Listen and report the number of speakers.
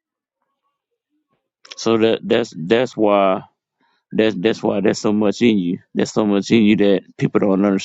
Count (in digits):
1